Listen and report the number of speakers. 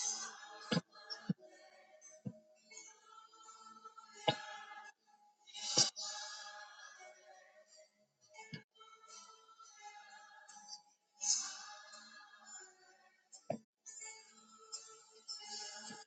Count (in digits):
0